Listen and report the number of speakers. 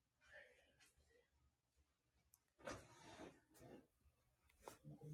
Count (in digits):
0